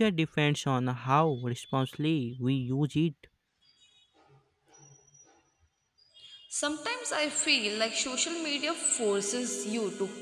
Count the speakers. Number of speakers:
two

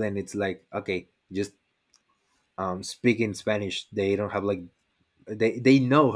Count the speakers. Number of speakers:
one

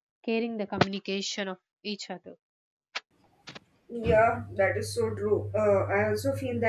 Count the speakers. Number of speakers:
two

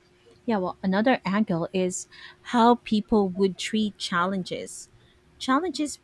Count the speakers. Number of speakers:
one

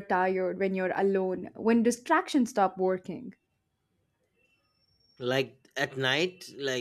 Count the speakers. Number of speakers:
two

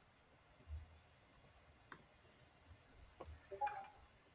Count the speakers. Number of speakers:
zero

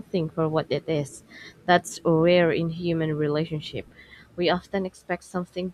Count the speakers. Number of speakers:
one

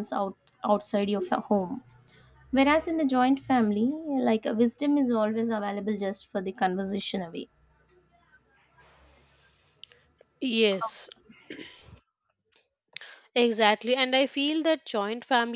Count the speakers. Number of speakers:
two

